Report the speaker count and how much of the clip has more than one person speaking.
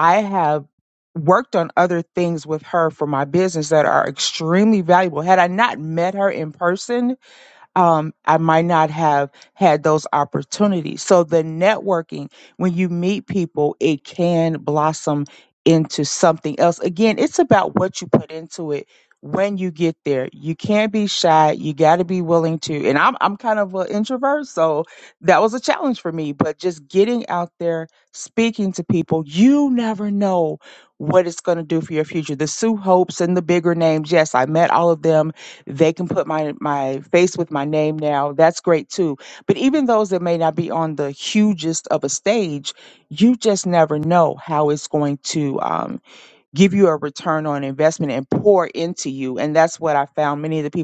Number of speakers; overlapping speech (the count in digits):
1, no overlap